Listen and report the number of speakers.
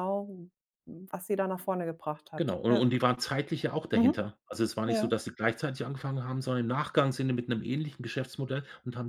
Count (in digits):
2